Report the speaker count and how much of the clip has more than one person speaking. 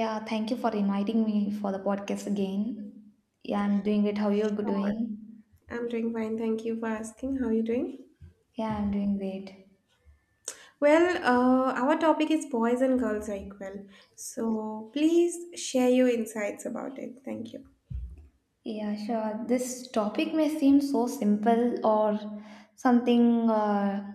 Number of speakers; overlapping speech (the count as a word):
two, about 1%